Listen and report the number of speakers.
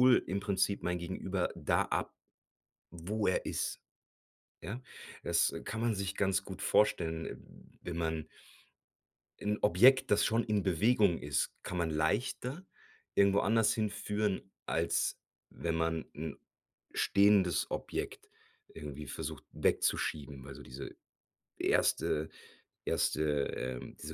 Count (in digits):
1